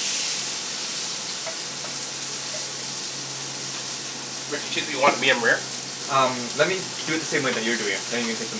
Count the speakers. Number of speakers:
two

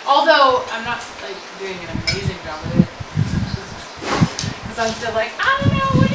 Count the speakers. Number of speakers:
one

